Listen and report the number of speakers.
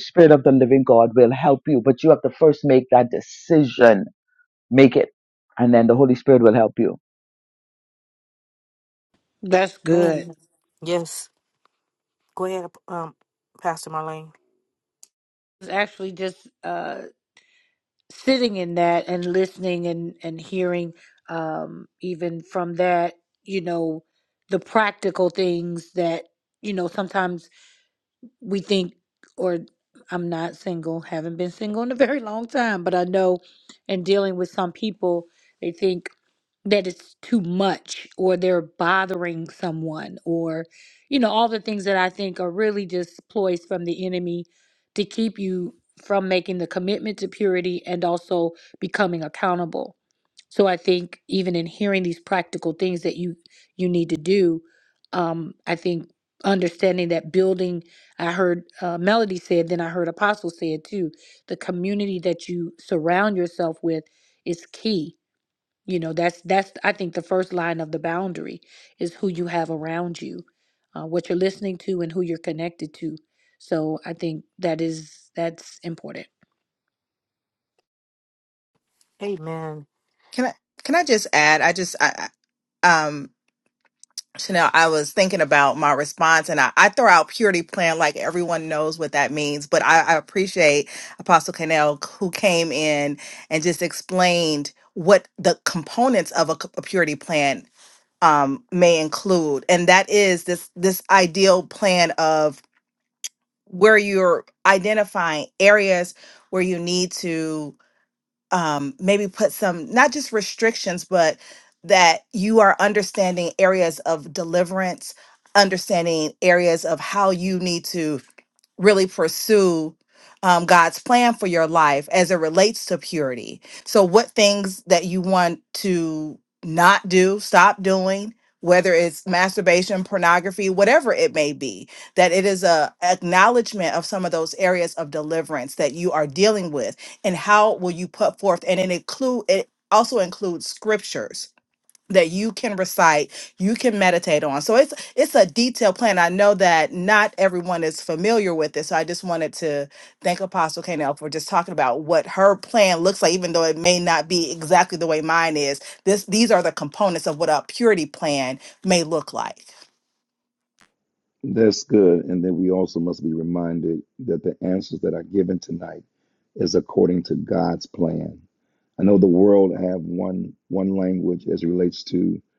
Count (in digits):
5